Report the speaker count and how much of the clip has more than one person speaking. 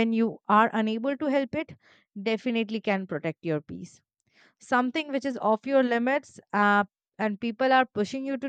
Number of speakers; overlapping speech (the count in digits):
1, no overlap